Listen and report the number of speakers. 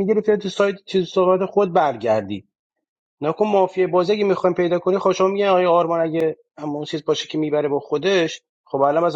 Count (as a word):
one